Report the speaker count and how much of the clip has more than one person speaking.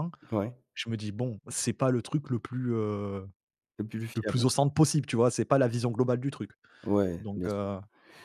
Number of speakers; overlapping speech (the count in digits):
2, about 9%